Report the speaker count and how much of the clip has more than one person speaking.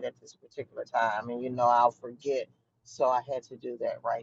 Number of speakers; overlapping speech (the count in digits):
1, no overlap